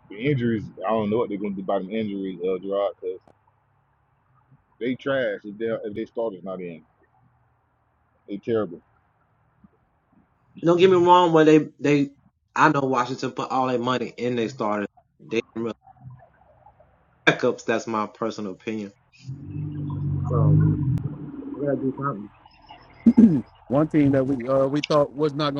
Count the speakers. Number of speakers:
three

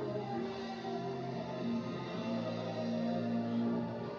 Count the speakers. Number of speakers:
zero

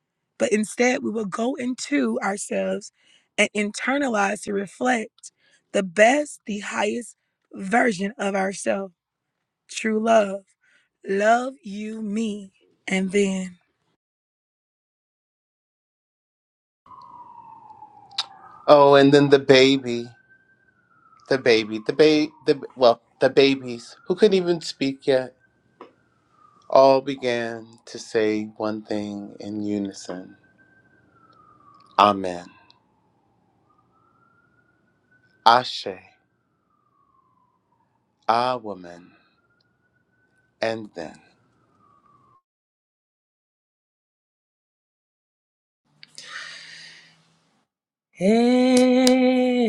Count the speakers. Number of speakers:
three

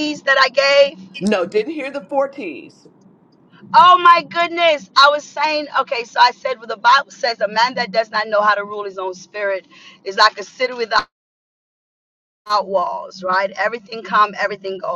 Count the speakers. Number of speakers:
two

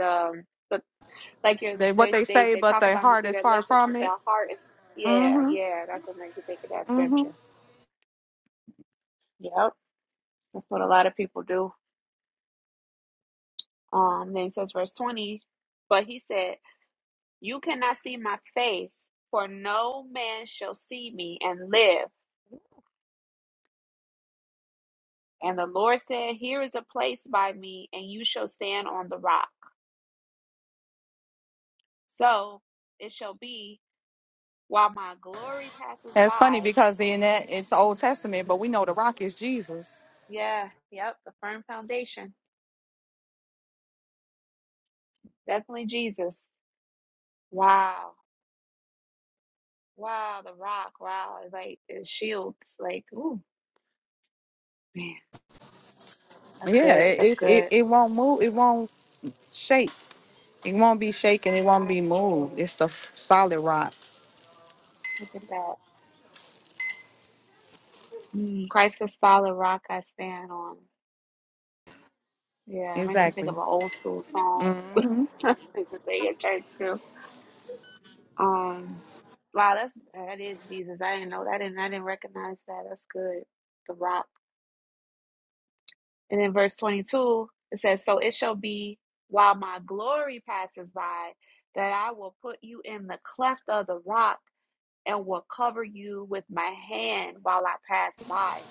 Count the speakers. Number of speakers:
two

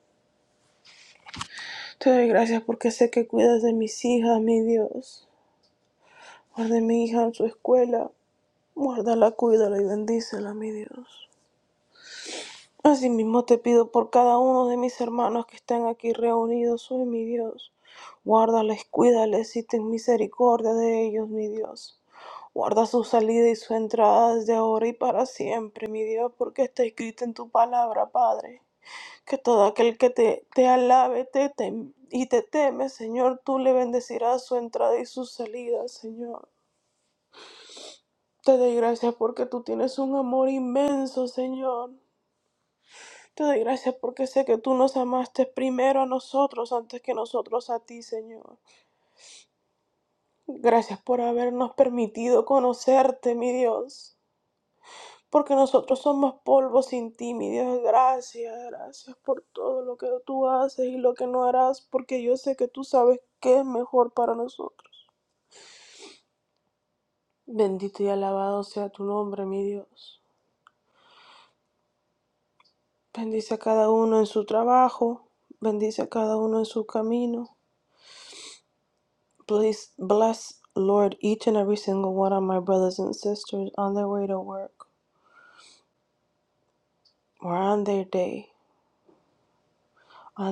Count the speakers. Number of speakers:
one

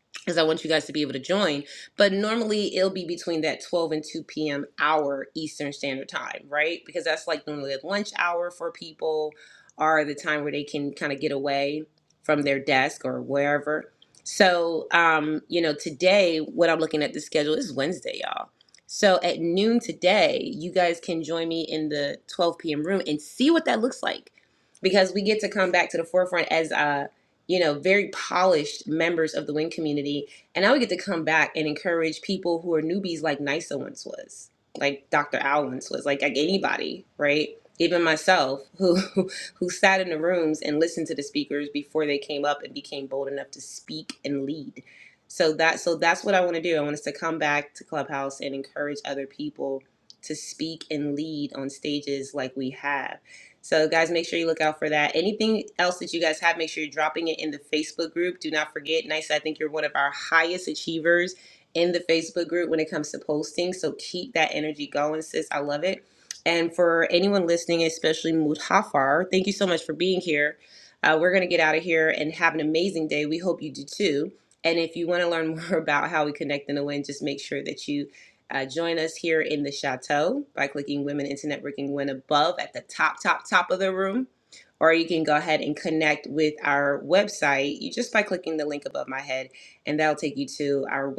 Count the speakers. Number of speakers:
one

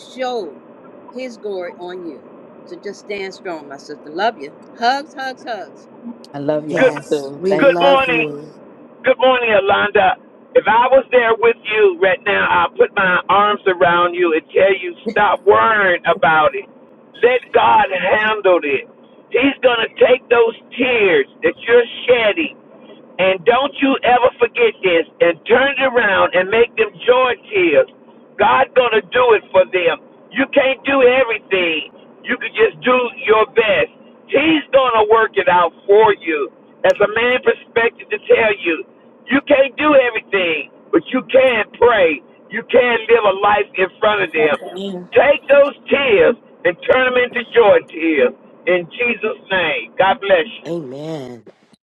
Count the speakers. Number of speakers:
four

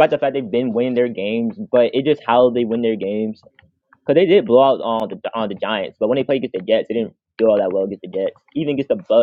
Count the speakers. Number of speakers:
one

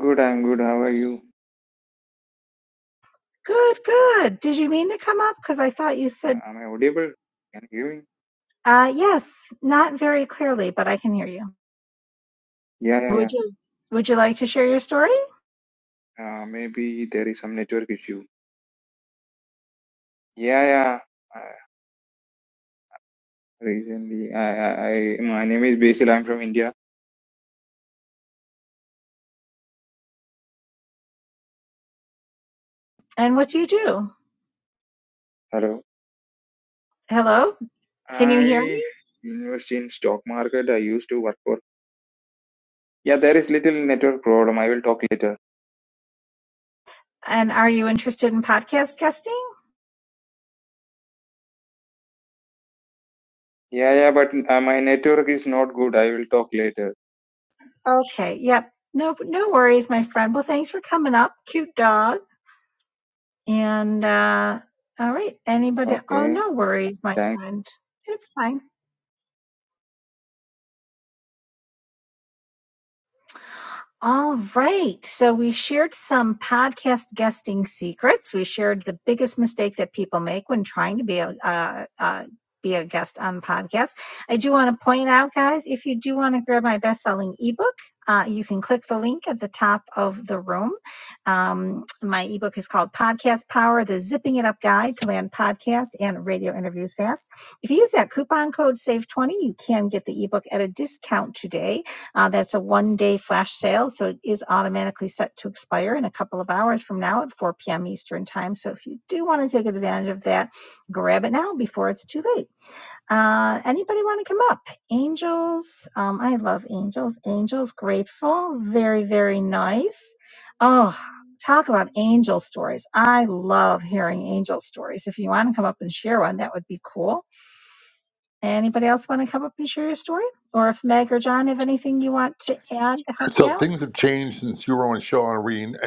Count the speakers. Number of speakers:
three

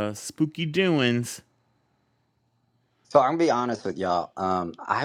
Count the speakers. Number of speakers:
two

